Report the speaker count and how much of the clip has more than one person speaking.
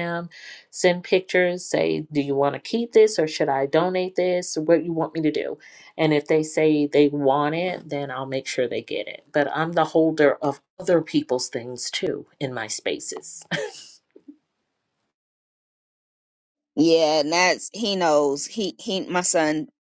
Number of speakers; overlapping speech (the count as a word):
two, no overlap